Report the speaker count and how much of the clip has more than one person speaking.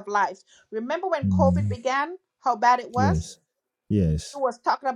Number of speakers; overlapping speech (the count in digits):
2, about 15%